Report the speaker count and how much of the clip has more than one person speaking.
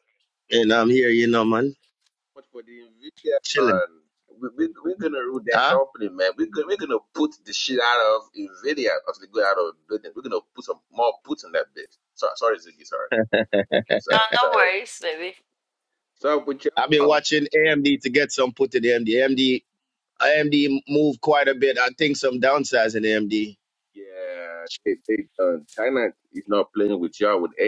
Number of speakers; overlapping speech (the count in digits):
3, about 6%